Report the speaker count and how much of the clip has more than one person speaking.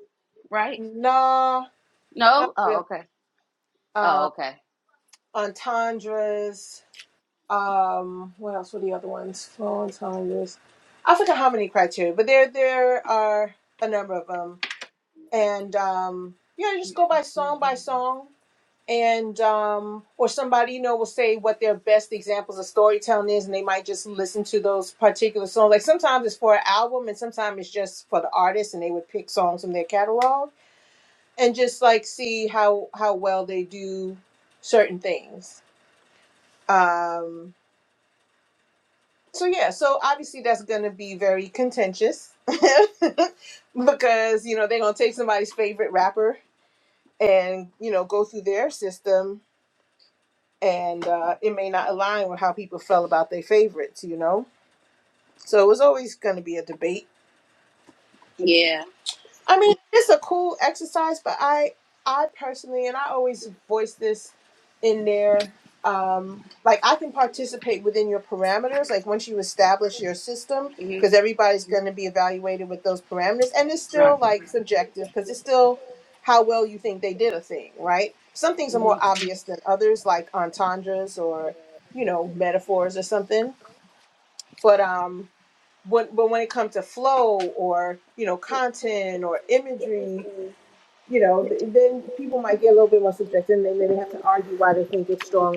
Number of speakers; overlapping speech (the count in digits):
2, about 2%